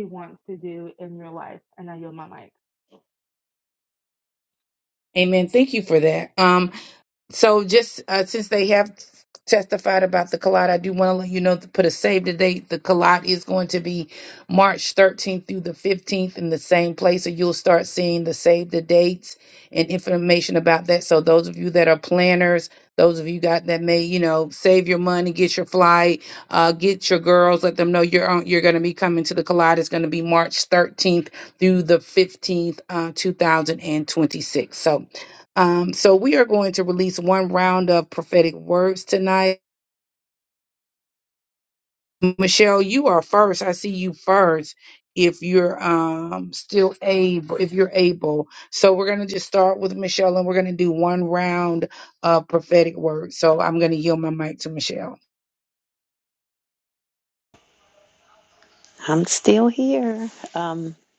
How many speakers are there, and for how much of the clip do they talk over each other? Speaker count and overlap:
three, no overlap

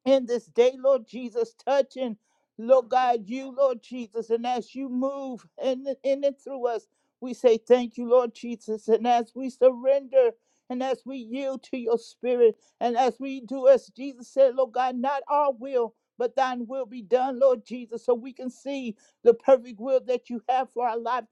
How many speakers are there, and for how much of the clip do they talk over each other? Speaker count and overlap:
one, no overlap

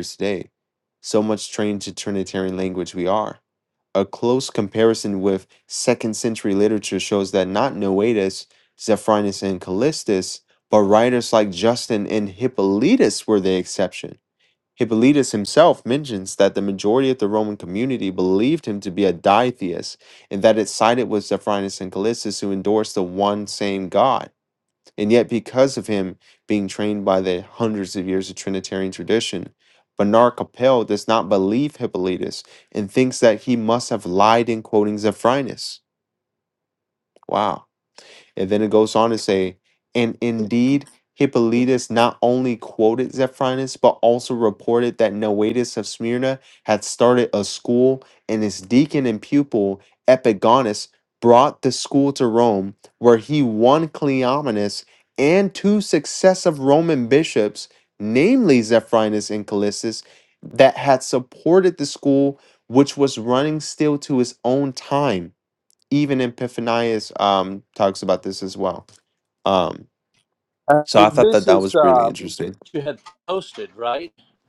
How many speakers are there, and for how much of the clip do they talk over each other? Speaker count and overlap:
two, about 2%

